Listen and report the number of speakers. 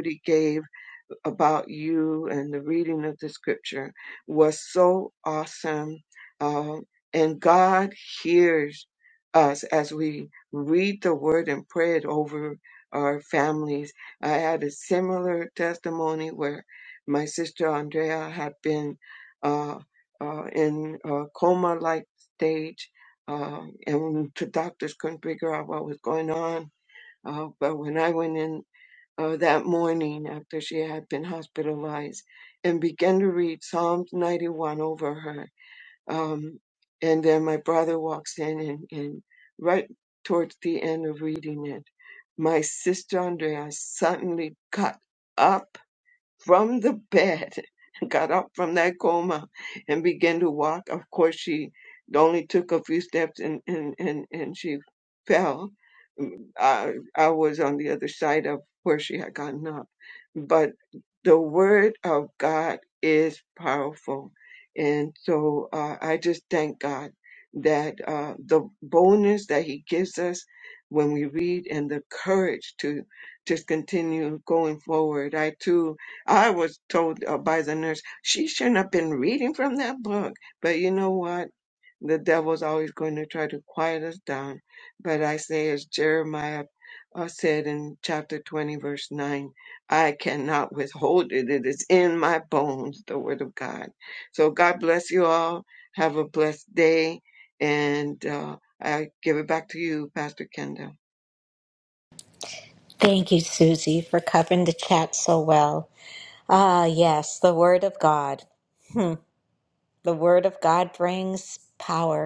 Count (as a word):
two